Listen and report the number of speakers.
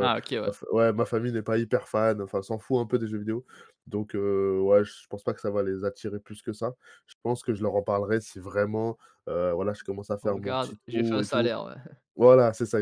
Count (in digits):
2